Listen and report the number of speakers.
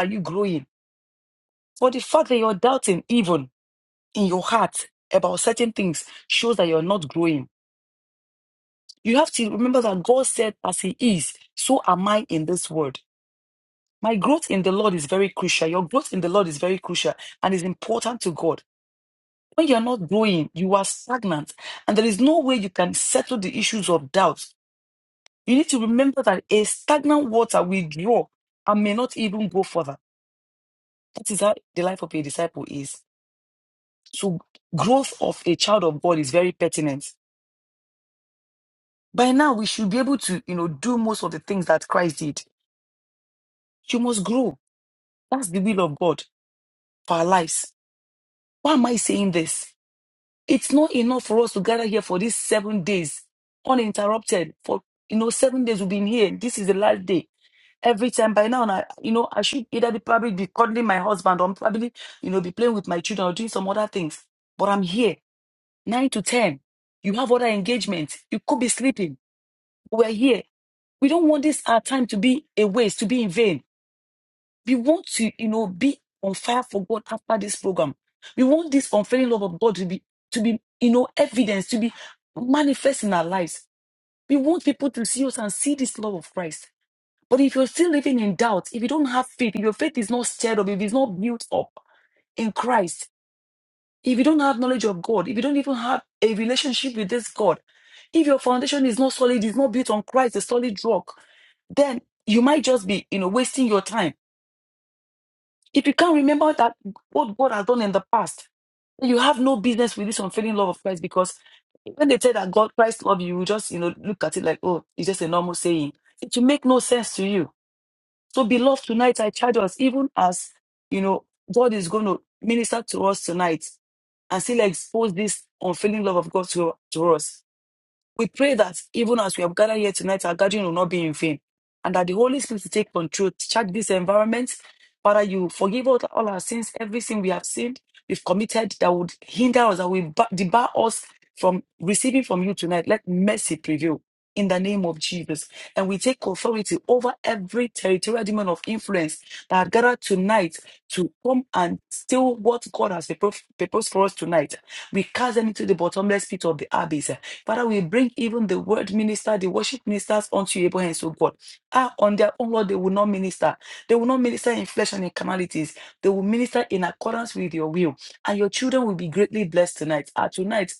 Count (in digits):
1